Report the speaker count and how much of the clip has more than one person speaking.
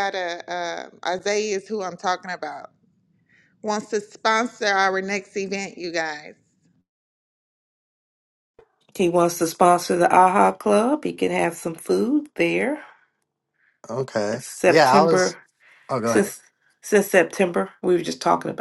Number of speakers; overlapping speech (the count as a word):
three, about 6%